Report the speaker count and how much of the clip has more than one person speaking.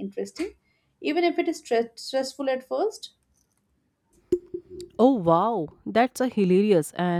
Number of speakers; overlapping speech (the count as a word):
two, no overlap